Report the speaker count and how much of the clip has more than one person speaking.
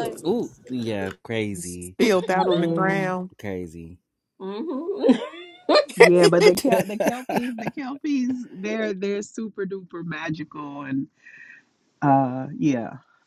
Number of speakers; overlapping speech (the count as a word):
four, about 6%